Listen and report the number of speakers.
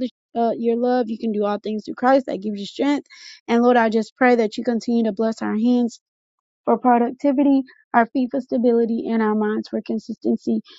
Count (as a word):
one